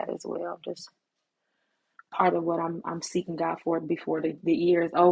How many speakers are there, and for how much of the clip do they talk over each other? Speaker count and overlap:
1, no overlap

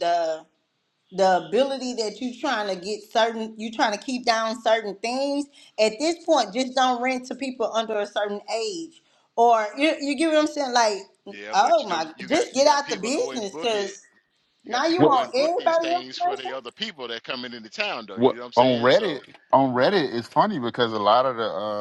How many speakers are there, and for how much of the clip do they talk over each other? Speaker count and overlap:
3, about 26%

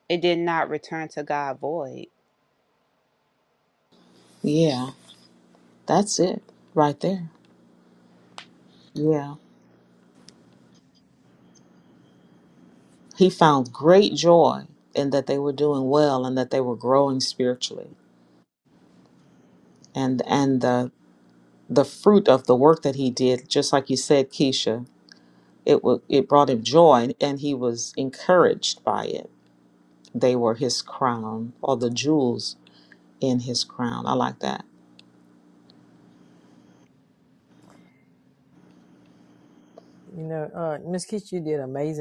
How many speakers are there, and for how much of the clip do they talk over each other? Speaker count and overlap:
3, no overlap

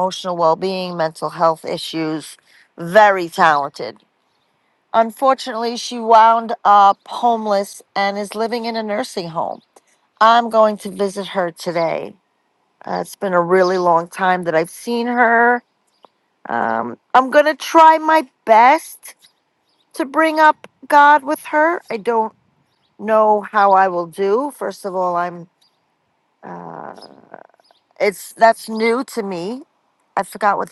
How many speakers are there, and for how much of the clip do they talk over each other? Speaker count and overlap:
1, no overlap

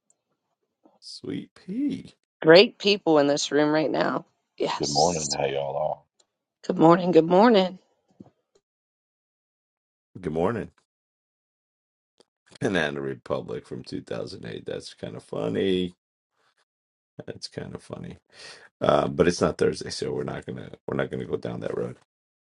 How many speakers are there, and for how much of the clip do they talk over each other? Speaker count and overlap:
3, under 1%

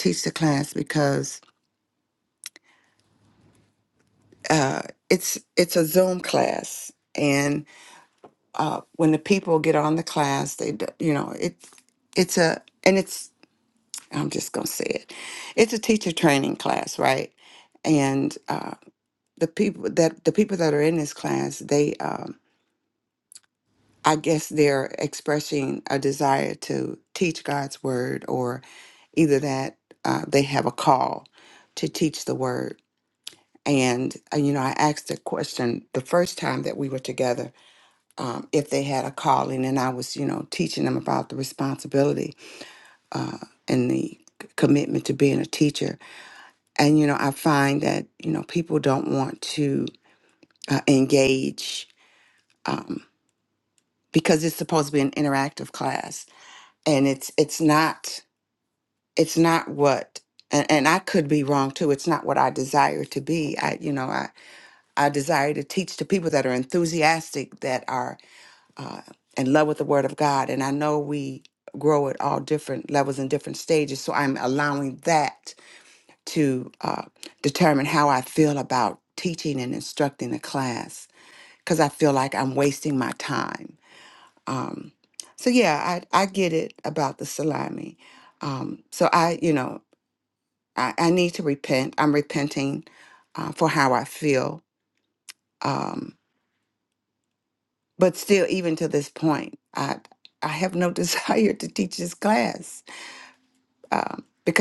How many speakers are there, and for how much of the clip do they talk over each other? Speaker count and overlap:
1, no overlap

